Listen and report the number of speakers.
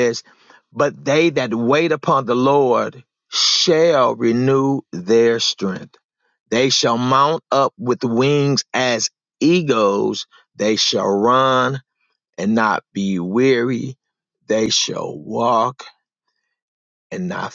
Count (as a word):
one